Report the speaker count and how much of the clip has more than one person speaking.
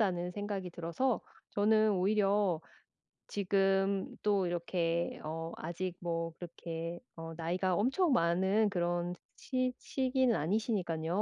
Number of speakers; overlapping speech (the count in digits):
1, no overlap